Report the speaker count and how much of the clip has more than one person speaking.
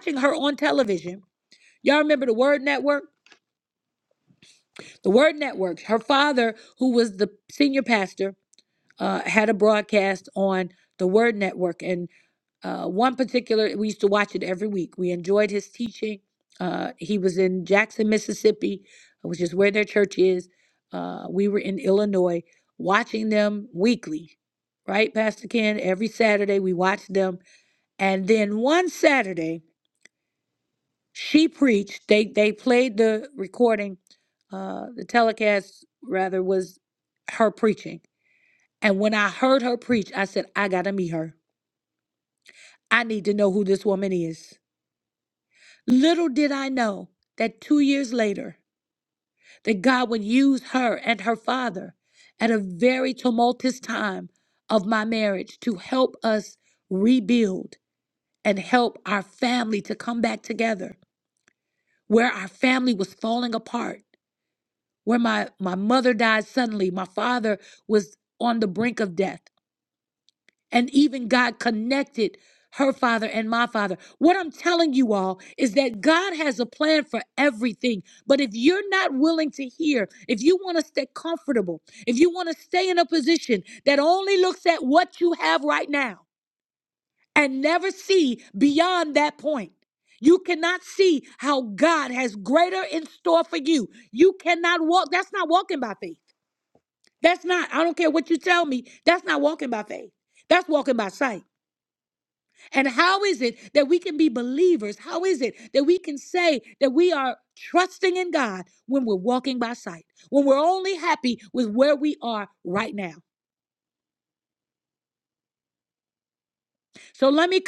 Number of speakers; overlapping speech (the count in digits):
1, no overlap